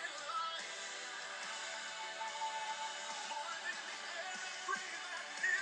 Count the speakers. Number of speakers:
0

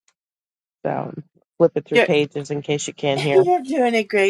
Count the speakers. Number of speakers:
2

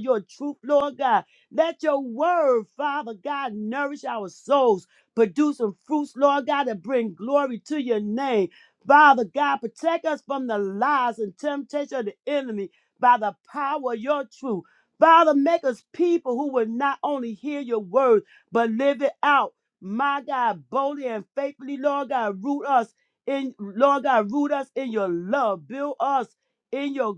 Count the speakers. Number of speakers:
1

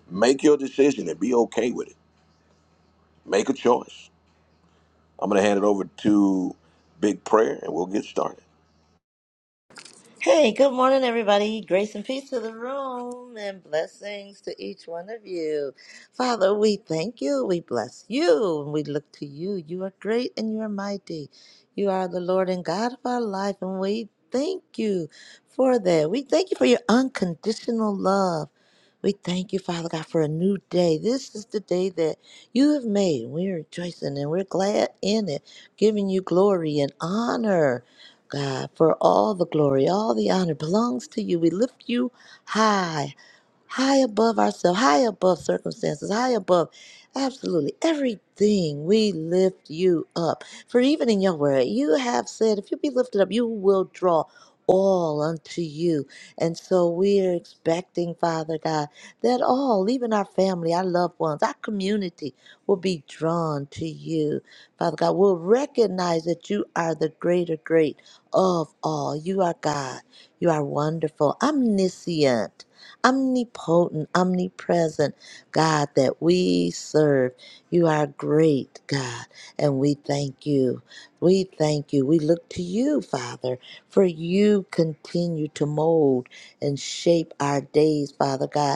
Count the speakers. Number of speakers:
2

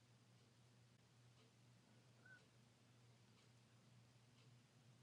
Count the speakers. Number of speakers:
0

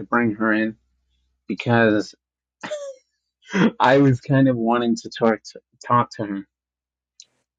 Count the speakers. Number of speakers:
1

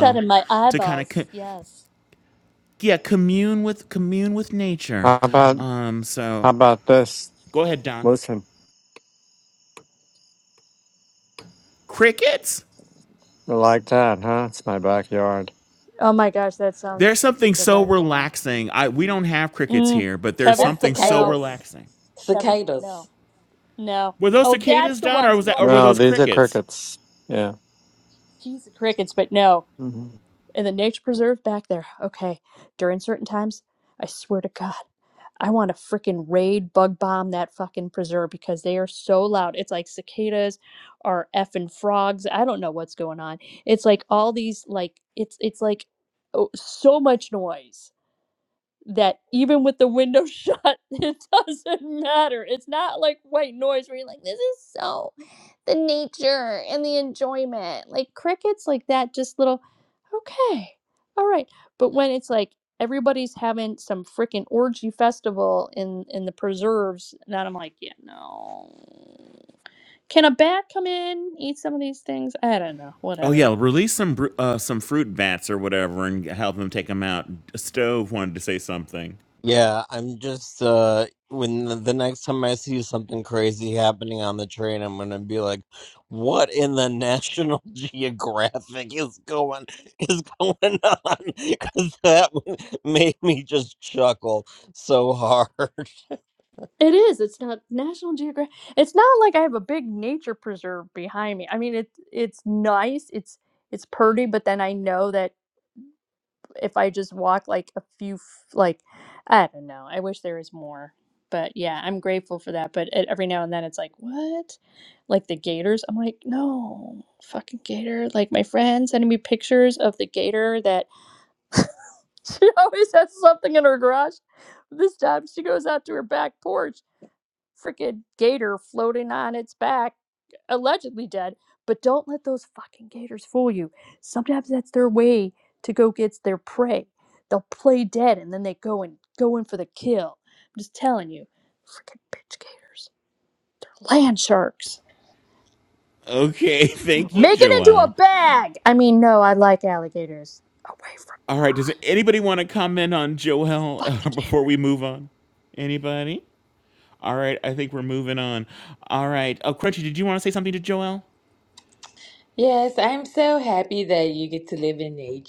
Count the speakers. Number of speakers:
5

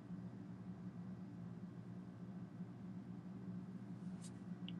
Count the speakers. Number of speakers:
0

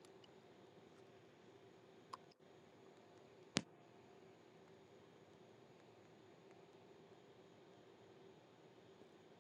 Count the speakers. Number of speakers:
0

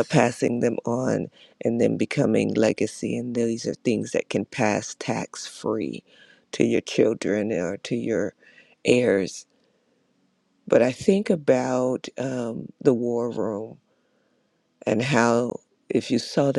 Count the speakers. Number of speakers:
1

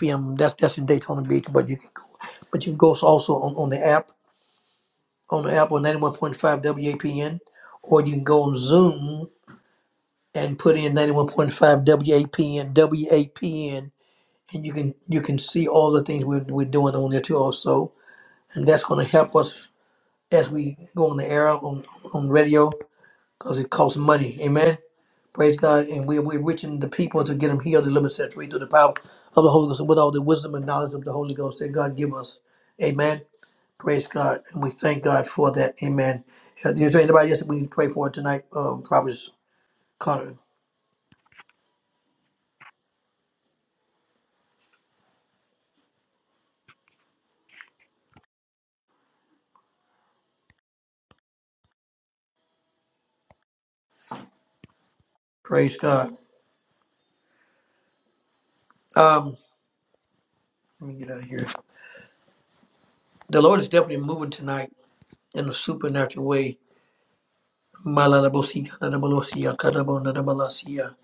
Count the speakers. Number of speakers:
1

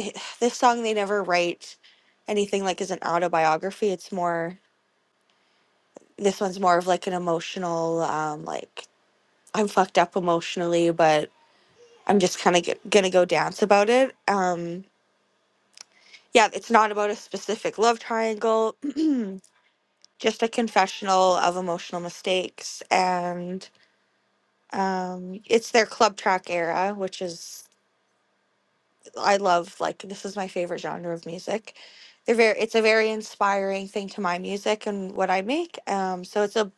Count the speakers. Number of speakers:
1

